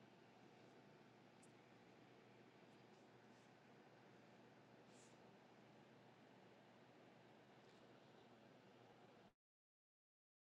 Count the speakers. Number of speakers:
0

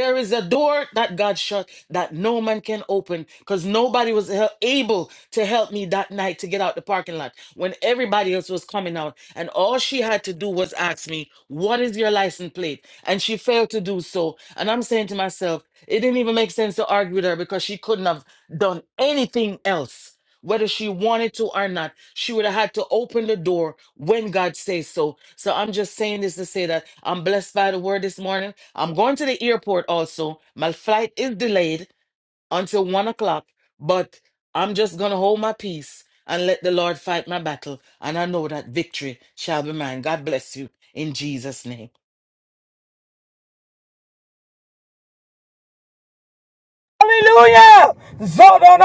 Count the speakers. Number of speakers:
2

